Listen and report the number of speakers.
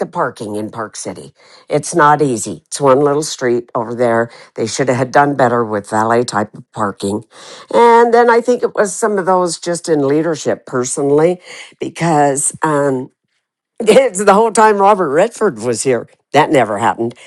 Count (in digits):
1